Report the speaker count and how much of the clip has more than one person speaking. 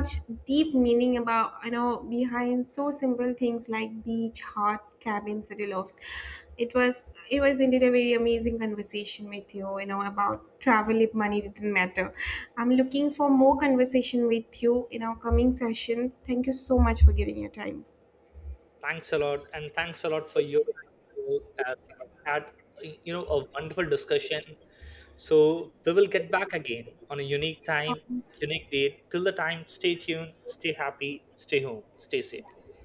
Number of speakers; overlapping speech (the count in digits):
2, no overlap